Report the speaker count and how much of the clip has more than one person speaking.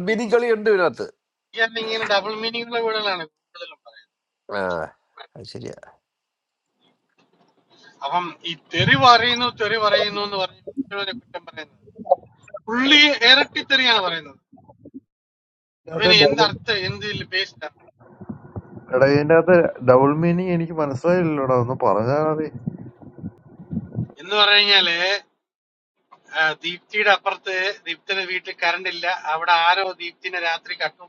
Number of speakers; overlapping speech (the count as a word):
three, about 2%